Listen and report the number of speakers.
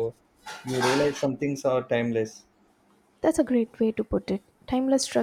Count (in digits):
2